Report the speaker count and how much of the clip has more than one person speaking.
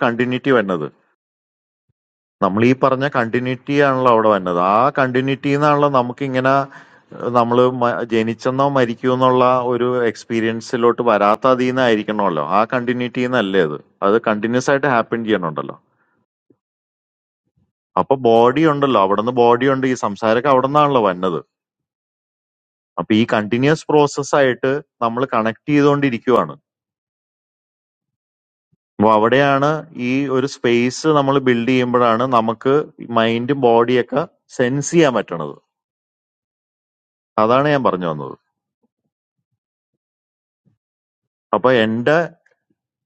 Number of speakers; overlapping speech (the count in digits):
1, no overlap